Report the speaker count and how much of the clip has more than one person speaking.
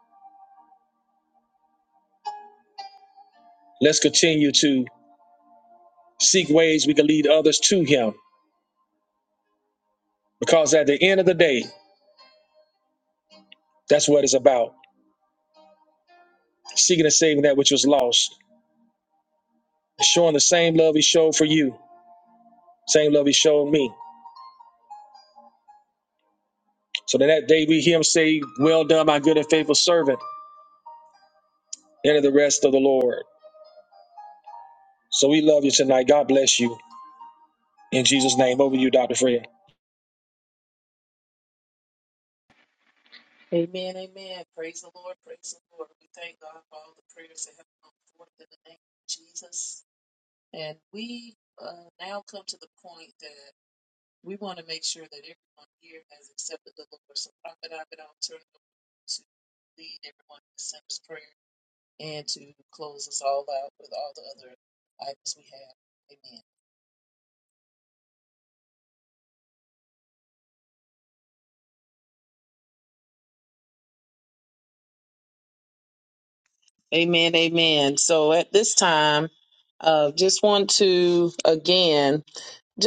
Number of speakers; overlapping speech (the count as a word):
two, no overlap